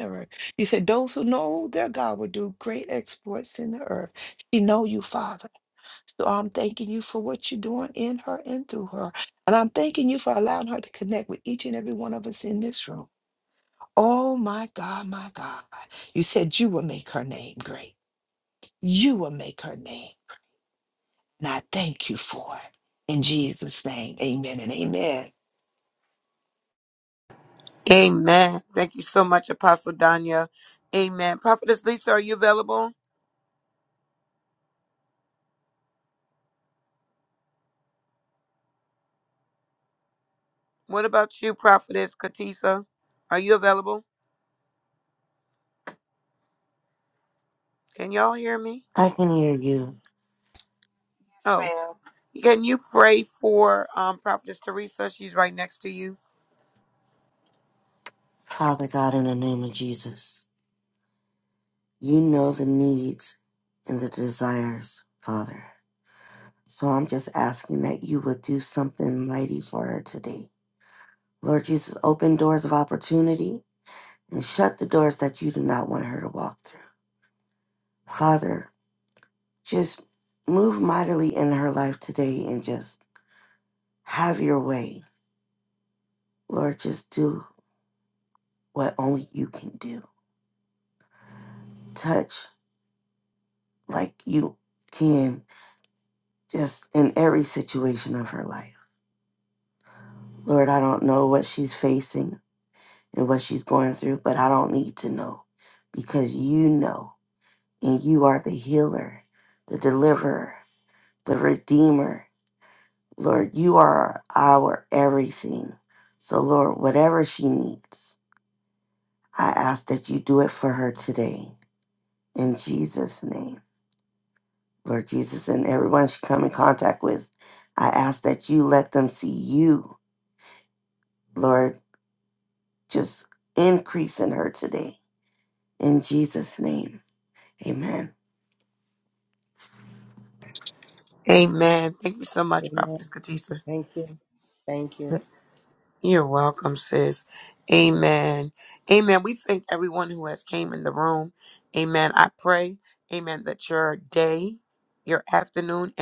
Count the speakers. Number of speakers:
four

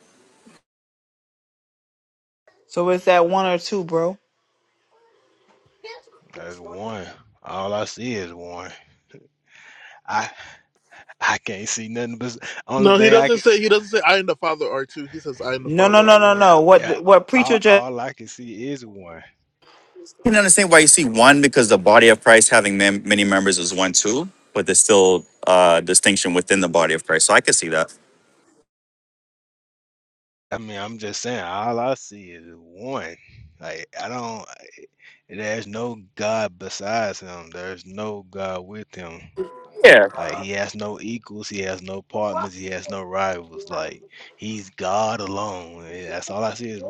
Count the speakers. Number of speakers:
four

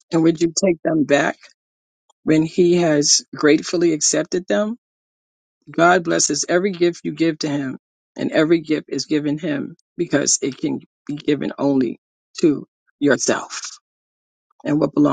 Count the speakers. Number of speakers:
one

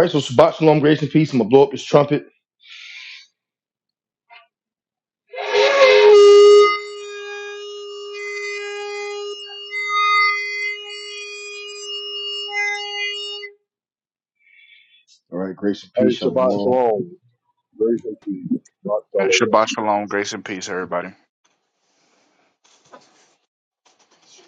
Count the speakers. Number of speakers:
three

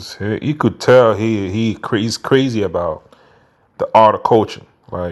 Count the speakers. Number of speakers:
one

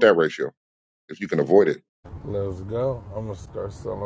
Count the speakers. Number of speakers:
two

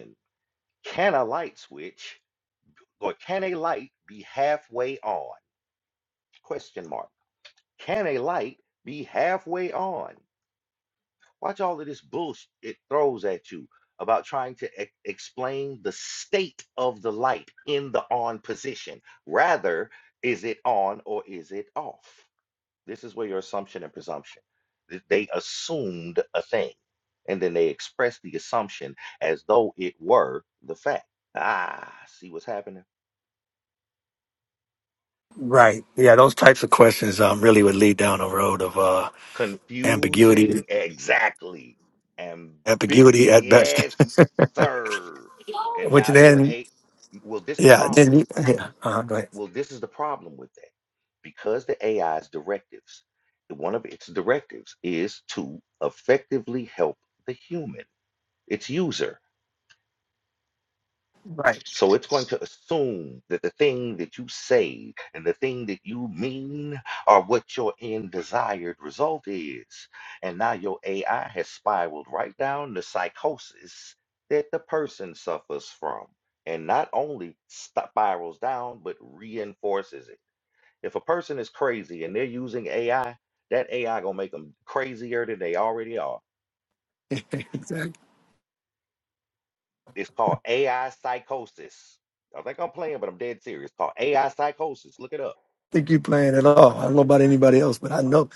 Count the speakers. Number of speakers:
two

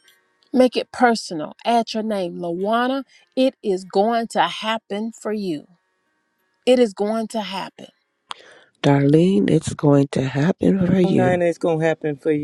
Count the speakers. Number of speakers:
three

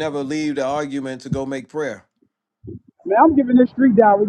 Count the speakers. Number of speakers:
two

